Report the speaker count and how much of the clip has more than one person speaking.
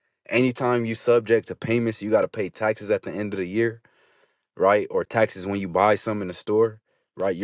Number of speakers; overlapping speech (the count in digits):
1, no overlap